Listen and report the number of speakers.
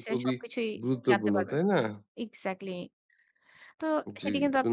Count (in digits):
2